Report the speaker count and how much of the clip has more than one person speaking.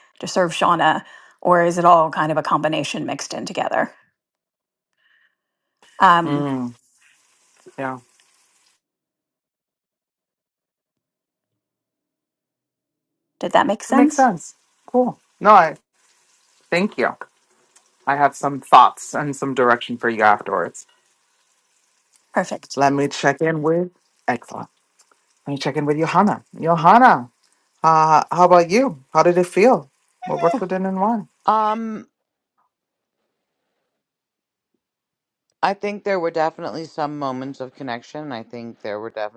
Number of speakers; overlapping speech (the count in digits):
3, about 1%